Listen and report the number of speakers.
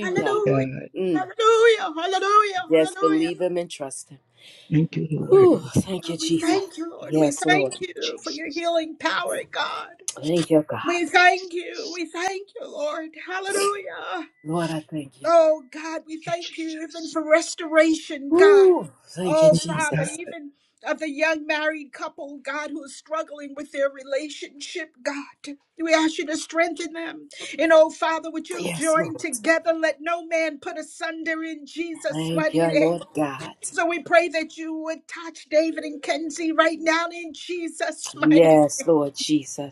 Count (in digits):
3